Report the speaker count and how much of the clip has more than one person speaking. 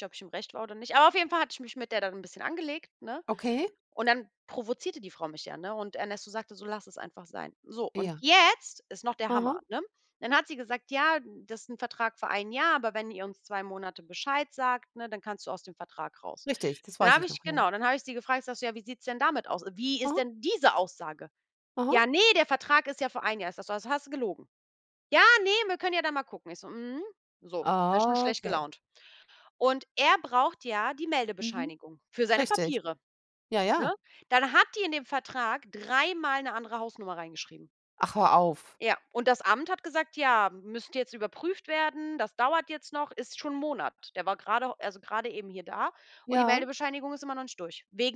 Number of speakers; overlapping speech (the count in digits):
2, about 7%